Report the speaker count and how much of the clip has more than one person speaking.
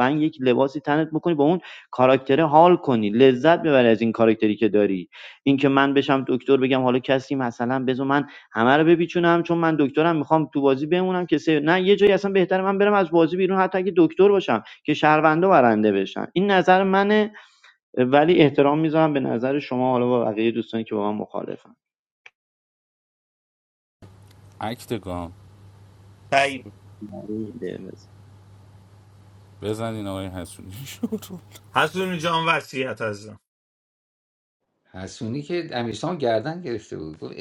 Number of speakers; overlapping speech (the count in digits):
4, no overlap